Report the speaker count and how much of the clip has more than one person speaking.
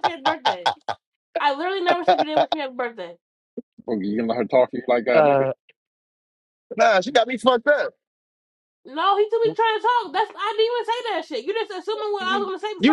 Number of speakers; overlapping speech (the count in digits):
3, about 5%